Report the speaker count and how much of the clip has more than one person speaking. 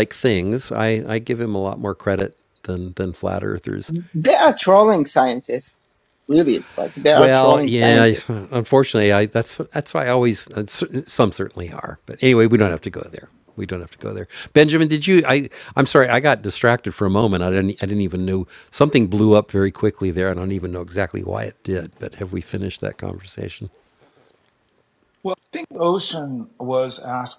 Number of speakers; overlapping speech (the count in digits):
3, about 4%